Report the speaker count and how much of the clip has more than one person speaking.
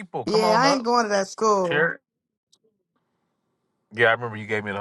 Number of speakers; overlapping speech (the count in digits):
2, about 17%